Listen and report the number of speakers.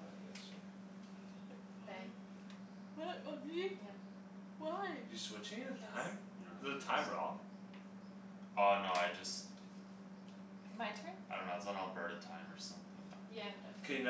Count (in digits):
4